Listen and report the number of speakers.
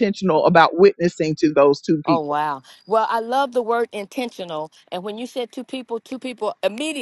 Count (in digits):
2